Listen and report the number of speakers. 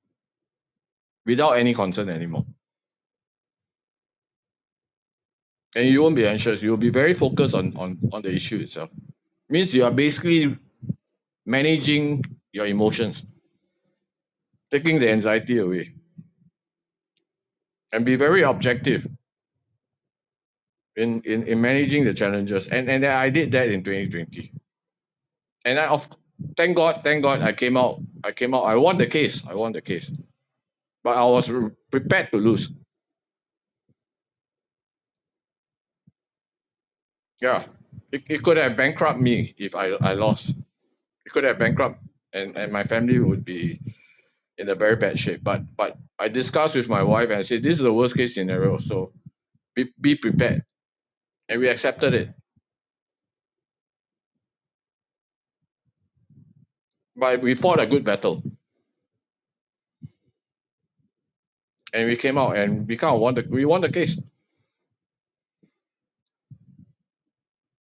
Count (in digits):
1